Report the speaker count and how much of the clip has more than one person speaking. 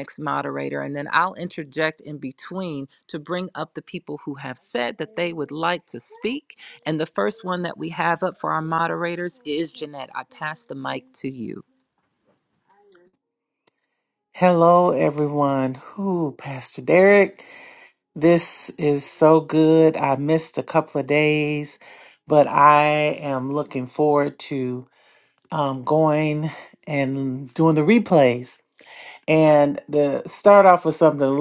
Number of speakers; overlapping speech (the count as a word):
two, no overlap